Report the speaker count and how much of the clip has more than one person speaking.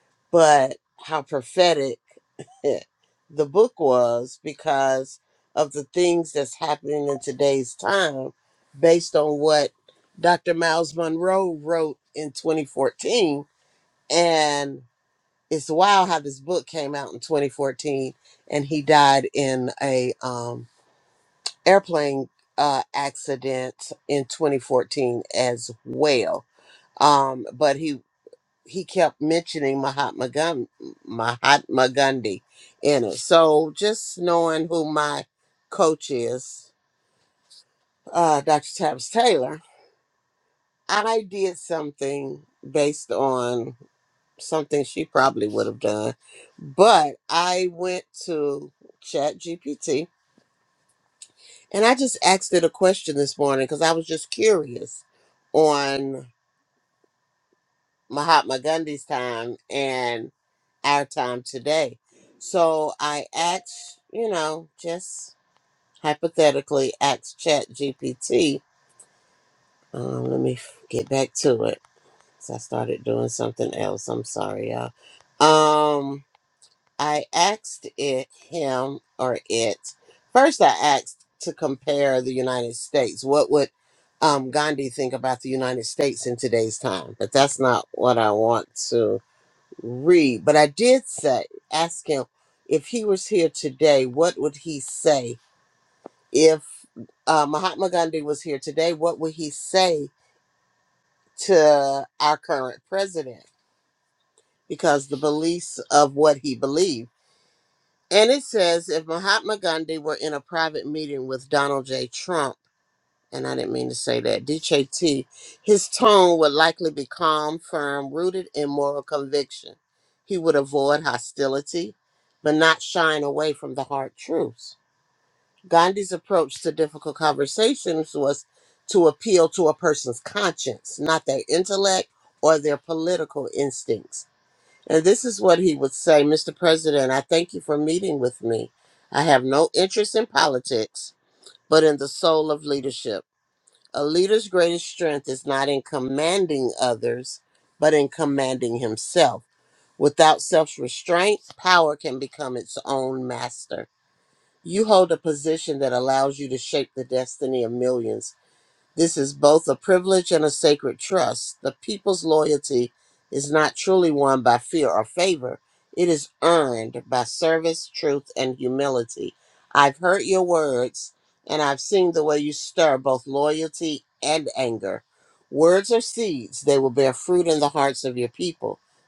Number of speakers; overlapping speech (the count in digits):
1, no overlap